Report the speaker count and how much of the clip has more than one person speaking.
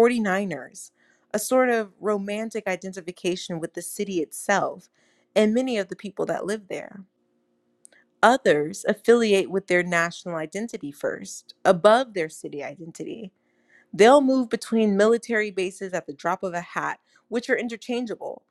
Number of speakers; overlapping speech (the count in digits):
1, no overlap